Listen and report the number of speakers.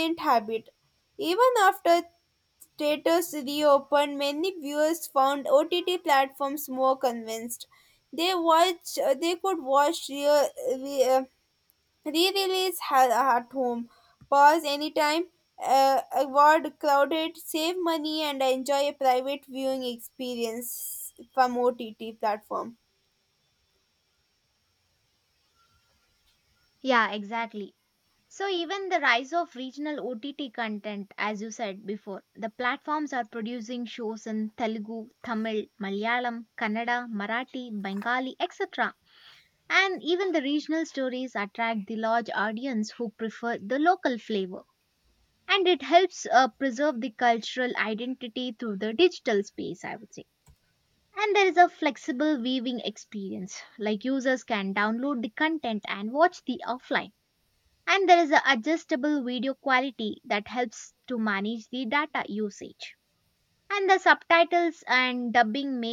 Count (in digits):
2